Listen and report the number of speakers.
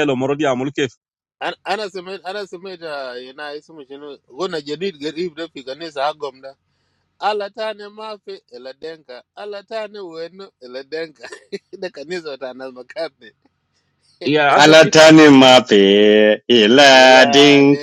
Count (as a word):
three